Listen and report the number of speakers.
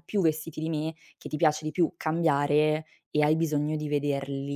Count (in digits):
1